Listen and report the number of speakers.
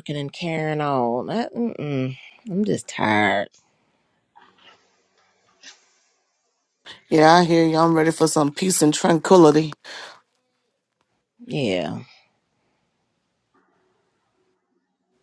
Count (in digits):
2